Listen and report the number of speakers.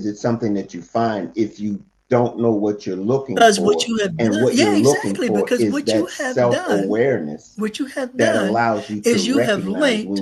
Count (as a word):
two